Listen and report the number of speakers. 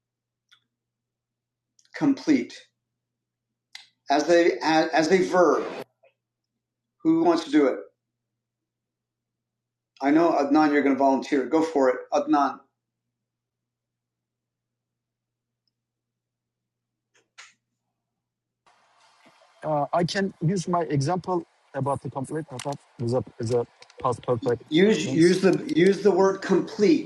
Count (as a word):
two